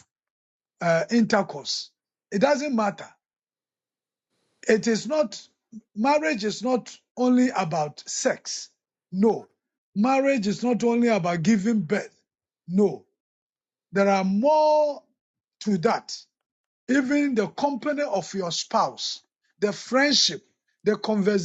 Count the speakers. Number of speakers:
1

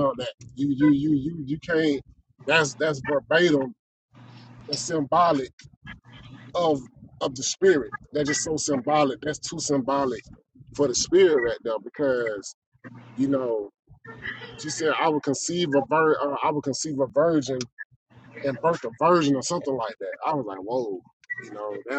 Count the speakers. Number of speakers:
1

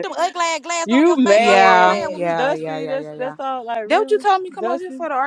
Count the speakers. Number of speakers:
3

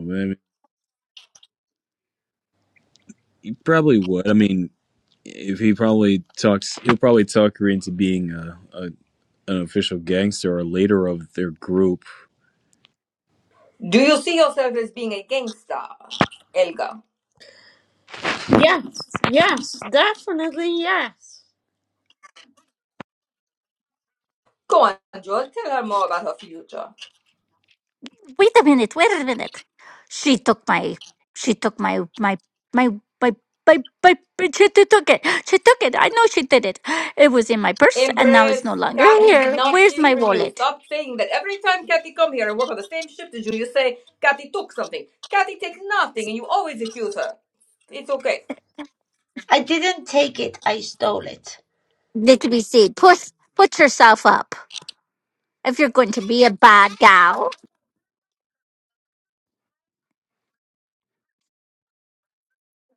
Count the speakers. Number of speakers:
5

